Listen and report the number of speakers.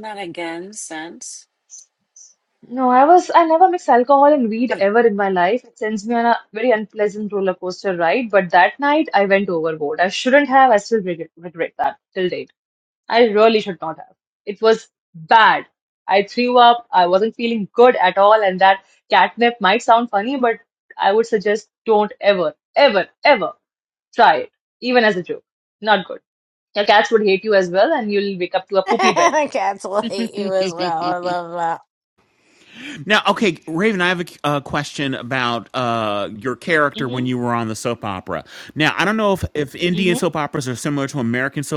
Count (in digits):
4